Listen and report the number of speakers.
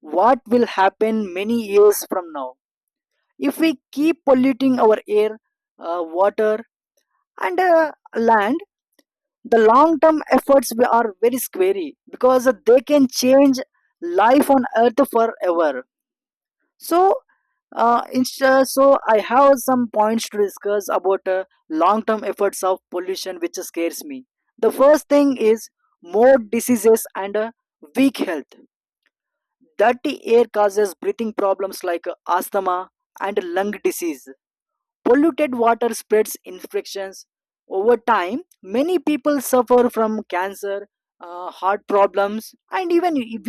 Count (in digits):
1